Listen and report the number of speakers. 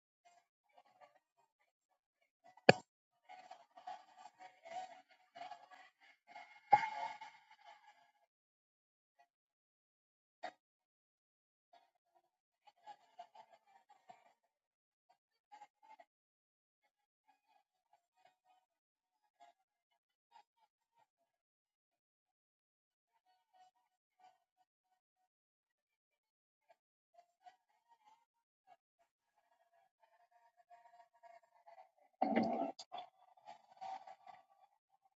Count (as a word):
zero